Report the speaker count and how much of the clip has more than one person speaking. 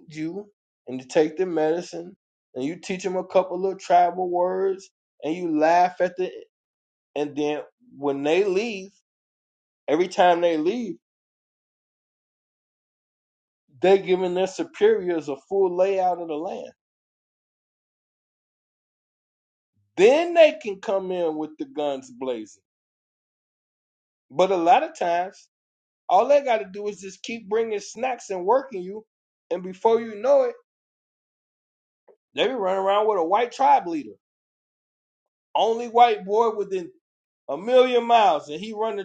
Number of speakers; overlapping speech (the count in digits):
1, no overlap